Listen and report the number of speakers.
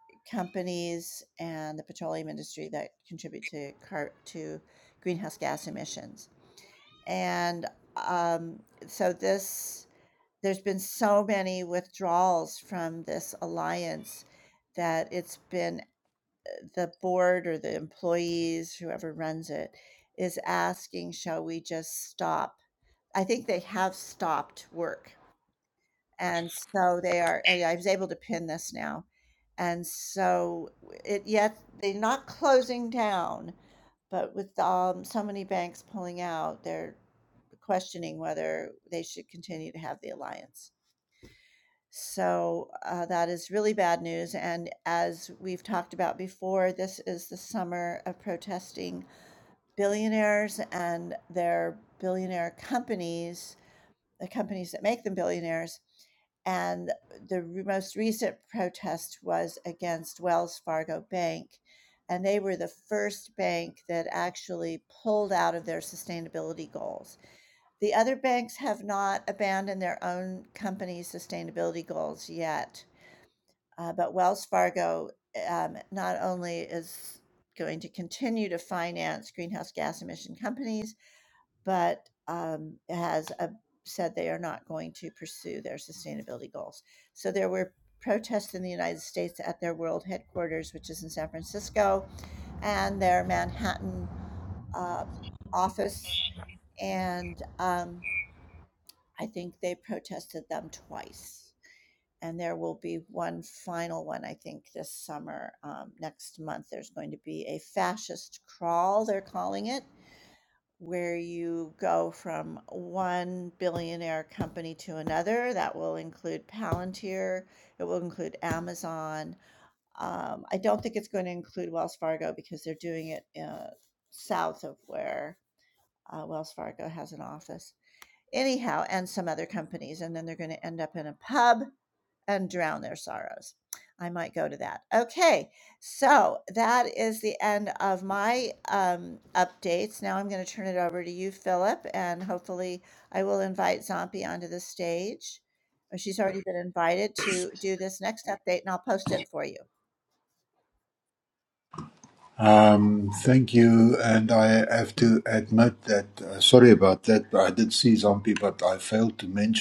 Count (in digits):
2